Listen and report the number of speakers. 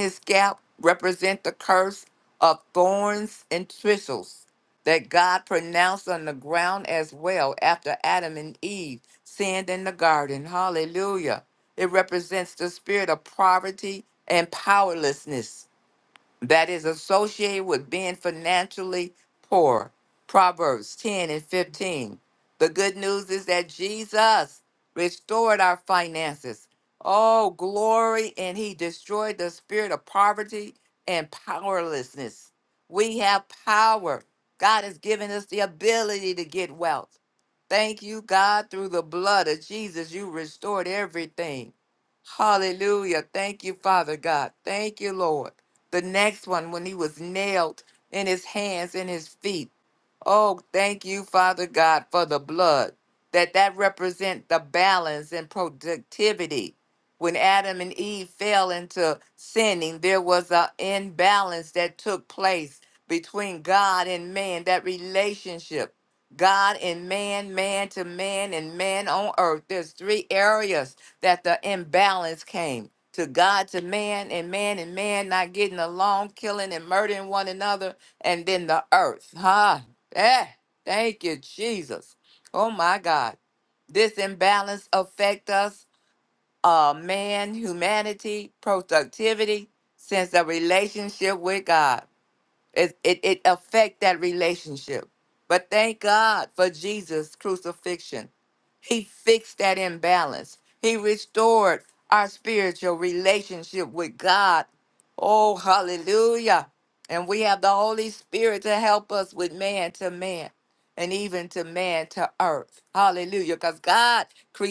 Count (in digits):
1